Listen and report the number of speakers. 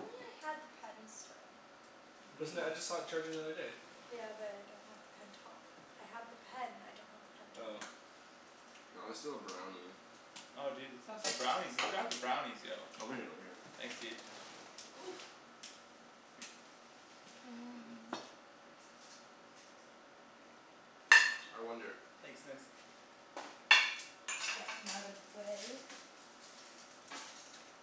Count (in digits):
4